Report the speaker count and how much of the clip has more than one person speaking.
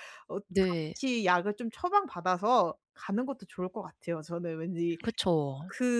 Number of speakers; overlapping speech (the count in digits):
2, about 7%